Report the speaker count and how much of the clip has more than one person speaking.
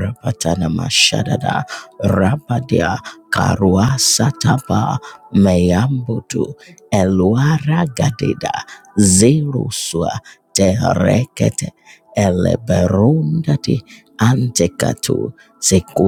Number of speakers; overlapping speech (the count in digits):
1, no overlap